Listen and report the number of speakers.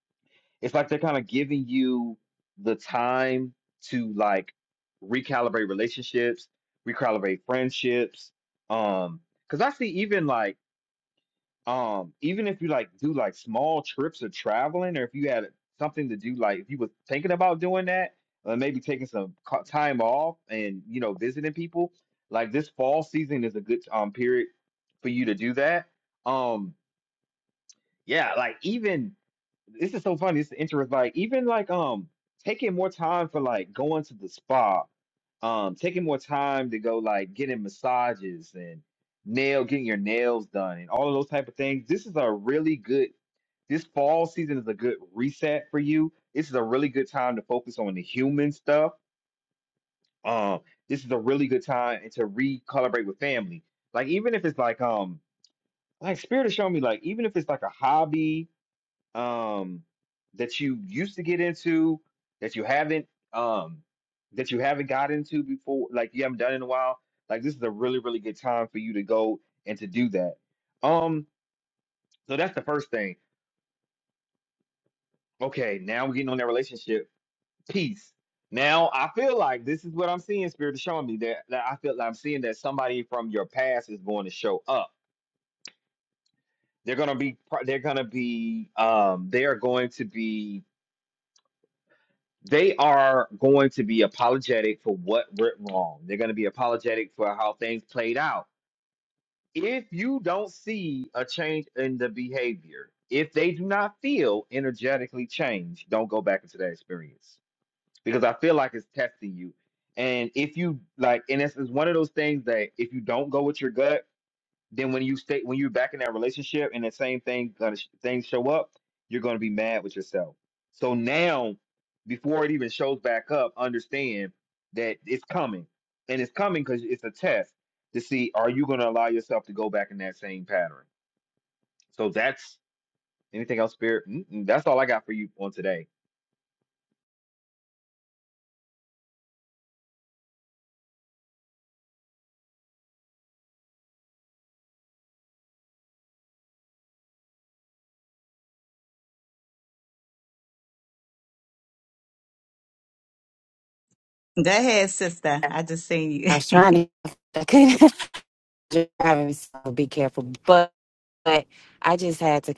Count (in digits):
3